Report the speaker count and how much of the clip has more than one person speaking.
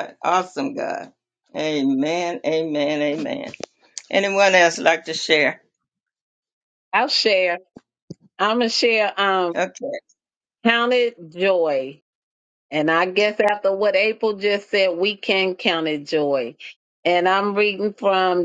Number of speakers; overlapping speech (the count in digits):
2, under 1%